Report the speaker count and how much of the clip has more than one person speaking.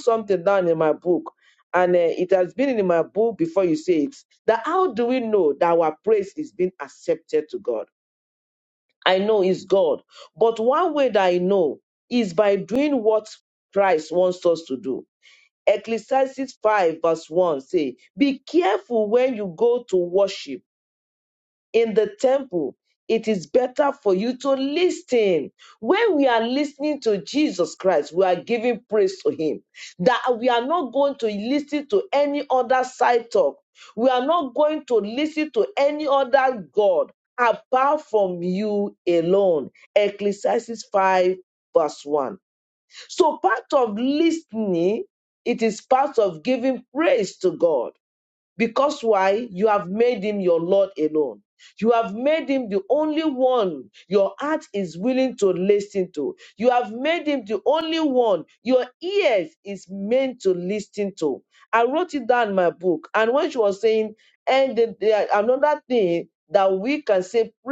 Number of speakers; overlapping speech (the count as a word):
one, no overlap